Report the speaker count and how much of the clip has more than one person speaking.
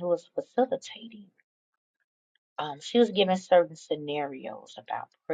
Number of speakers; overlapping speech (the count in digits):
1, no overlap